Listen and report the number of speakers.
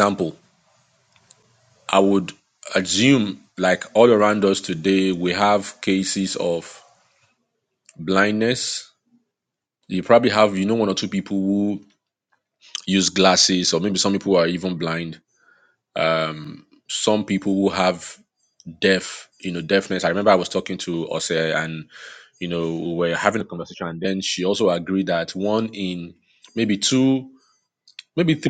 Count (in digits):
1